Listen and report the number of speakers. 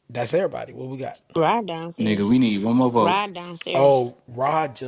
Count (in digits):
3